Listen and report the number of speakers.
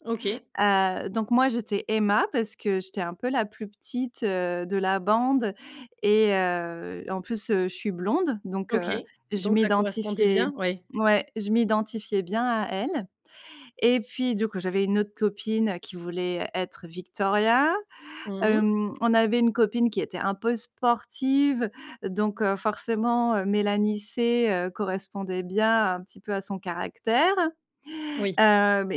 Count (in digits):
2